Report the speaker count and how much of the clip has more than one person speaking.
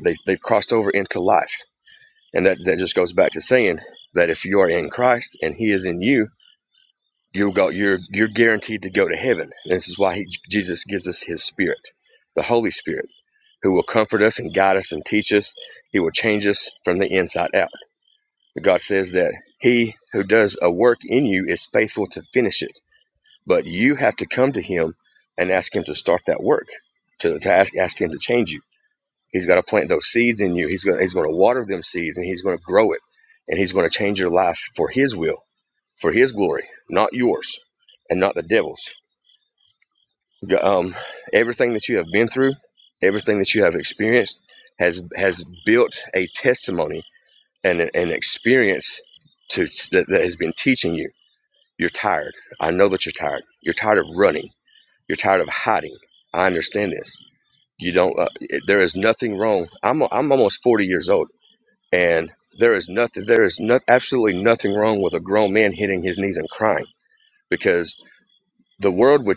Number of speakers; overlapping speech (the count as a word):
one, no overlap